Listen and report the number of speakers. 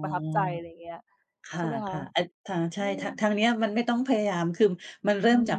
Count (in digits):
2